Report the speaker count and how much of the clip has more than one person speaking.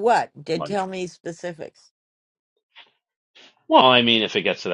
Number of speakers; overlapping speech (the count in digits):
2, no overlap